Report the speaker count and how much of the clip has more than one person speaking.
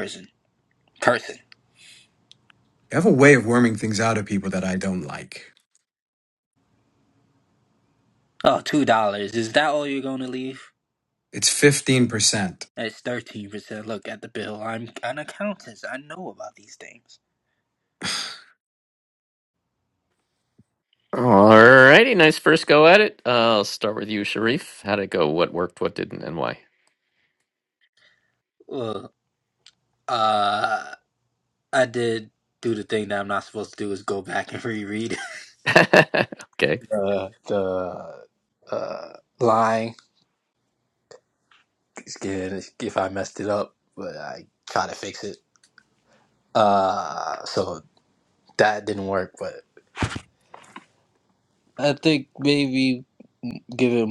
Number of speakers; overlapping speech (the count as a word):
three, no overlap